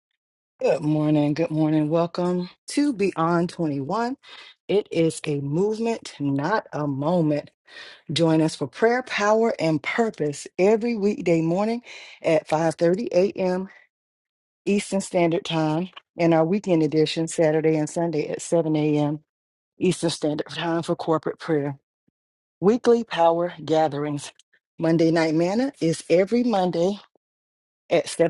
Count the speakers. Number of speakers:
1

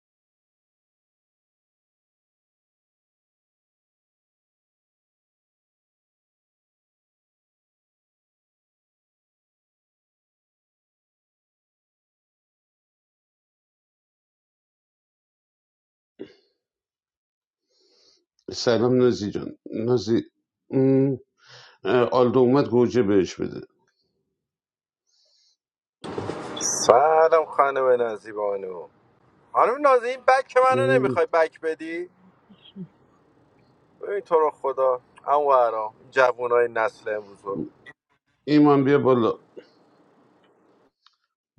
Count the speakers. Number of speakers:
2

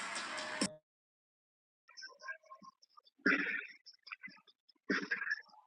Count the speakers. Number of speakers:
0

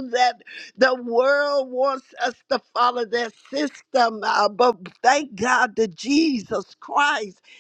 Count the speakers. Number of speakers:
1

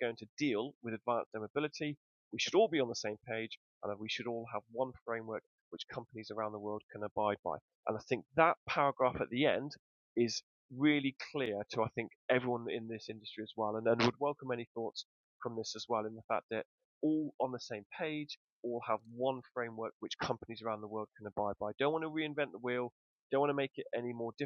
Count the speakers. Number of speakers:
1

